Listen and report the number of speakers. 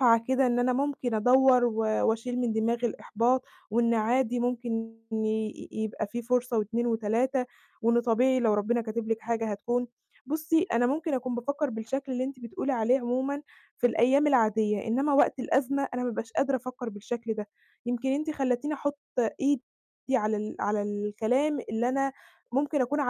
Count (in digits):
1